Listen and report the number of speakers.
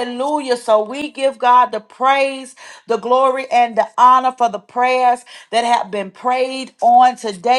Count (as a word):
one